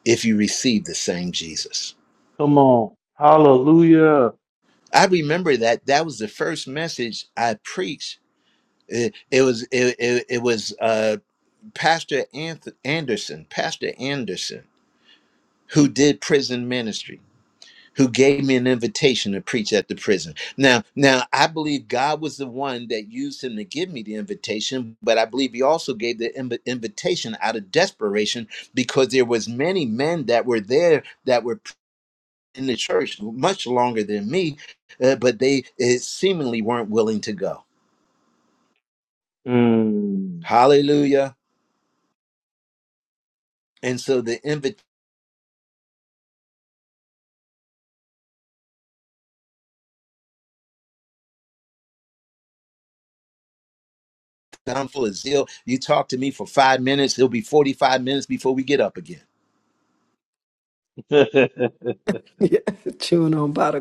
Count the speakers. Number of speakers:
3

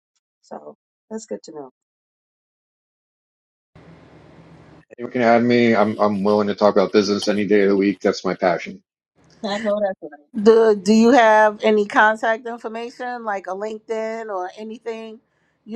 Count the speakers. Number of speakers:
3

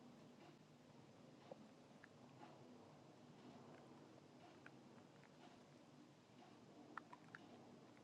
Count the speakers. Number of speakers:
0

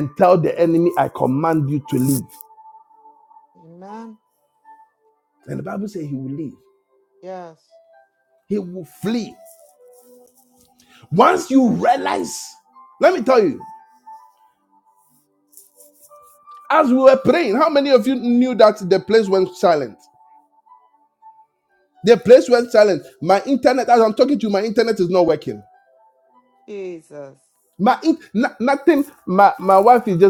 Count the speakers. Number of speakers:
2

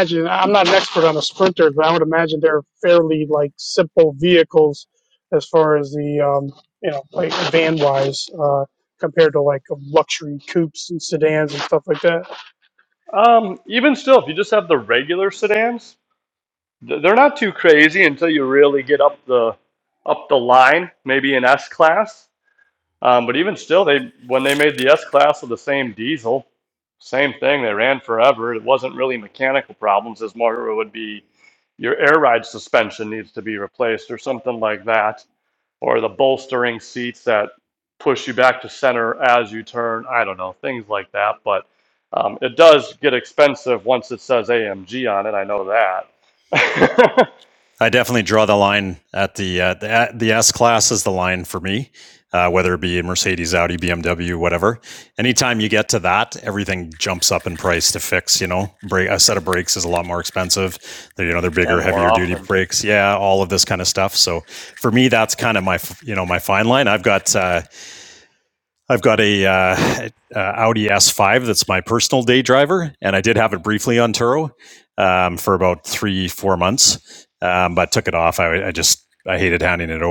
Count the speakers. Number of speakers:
3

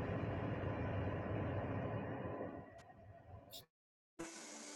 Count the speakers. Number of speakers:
0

